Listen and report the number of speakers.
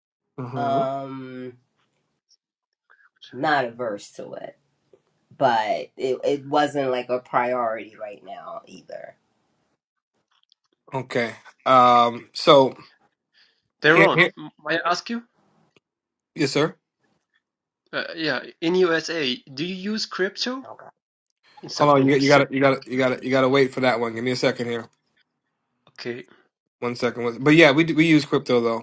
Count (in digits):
3